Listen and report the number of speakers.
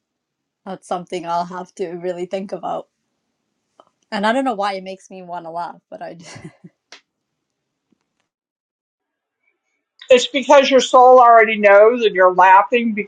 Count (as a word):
two